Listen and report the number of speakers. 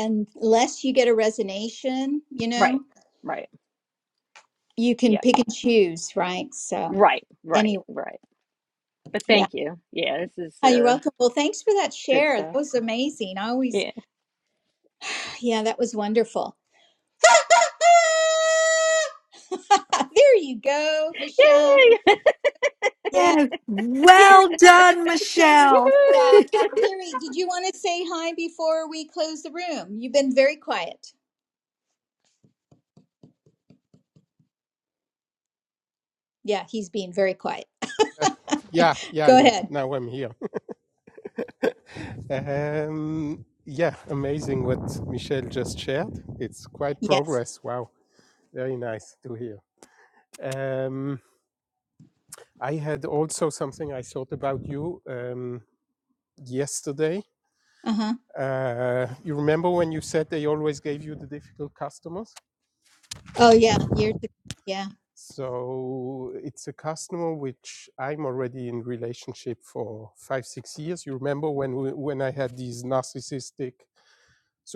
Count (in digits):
4